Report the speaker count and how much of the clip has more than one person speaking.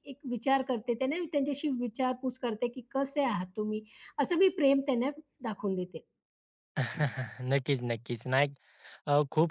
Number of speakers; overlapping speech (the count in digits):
2, no overlap